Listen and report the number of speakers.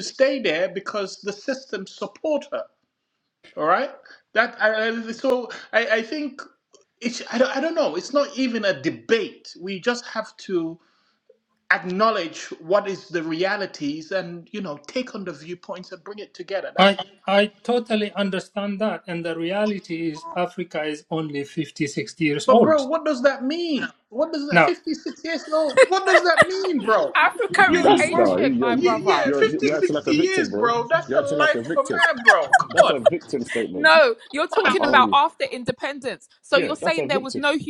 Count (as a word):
four